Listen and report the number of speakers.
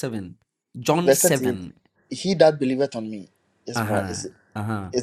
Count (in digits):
2